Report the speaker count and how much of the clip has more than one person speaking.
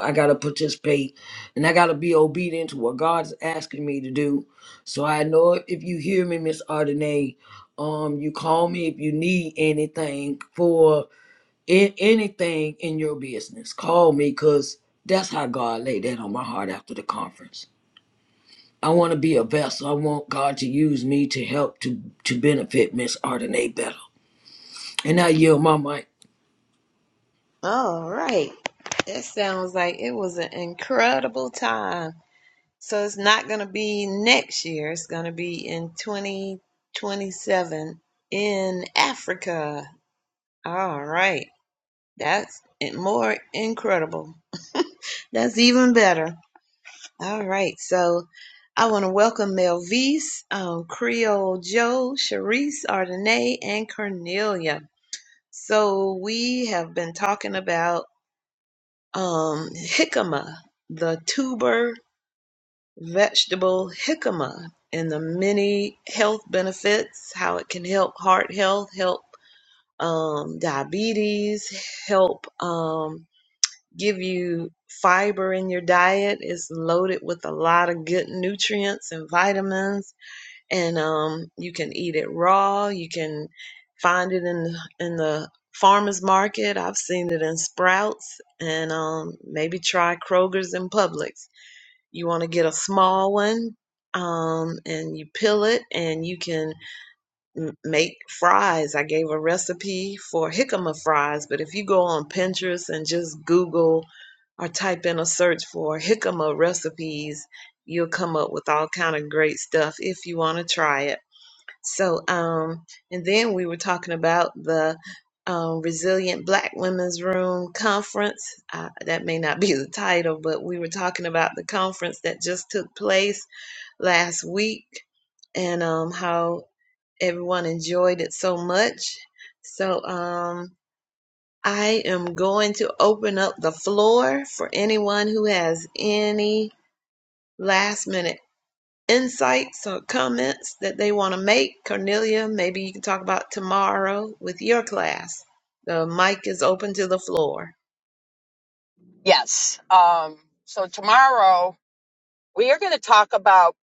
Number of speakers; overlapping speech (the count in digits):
3, no overlap